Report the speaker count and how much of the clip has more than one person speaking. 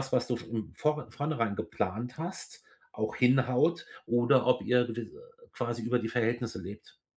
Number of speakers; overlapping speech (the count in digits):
1, no overlap